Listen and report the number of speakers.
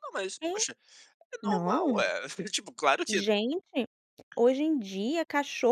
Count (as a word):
two